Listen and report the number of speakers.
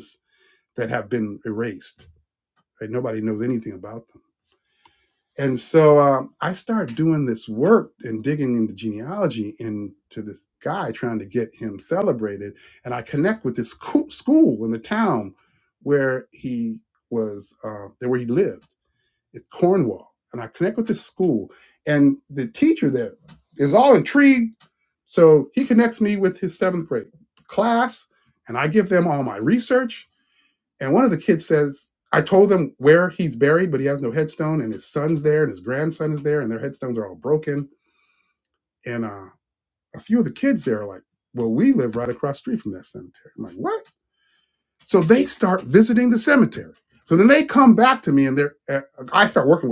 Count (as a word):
one